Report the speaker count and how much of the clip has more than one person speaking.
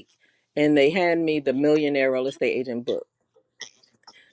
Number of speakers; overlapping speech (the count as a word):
one, no overlap